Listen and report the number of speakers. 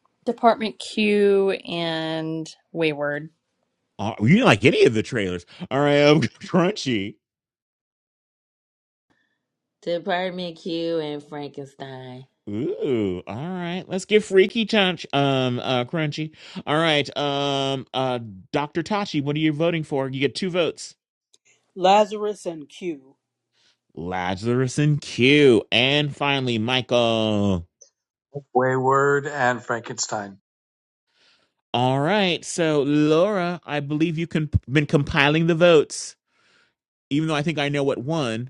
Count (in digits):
5